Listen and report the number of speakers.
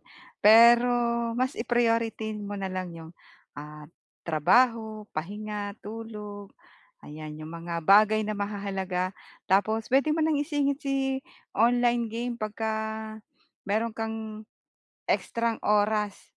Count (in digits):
1